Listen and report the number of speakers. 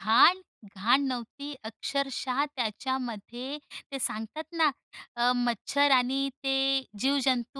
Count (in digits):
1